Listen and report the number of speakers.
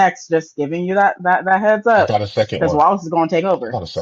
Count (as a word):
two